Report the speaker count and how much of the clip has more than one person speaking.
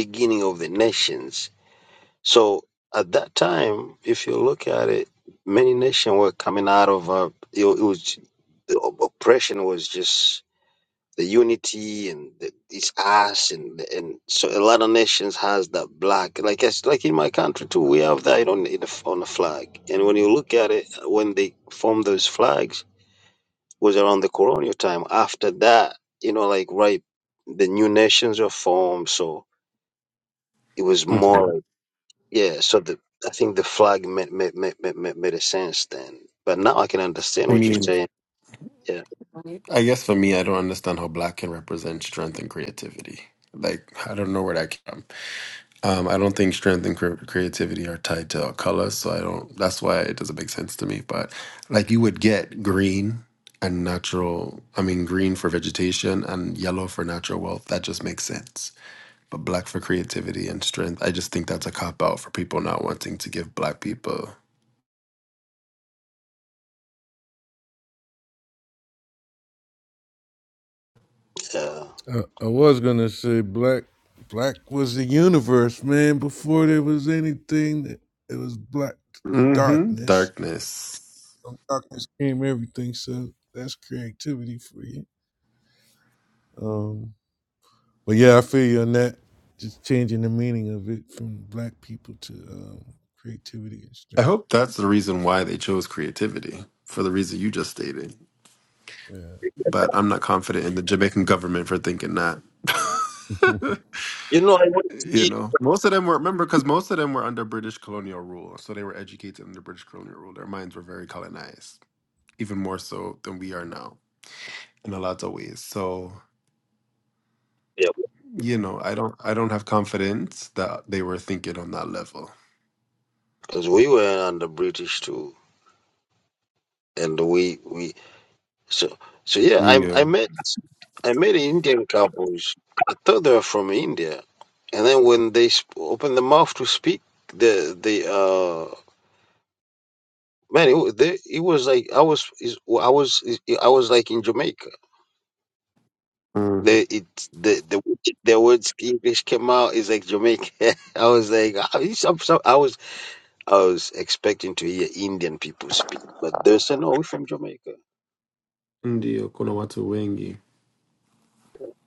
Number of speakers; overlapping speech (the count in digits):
3, about 2%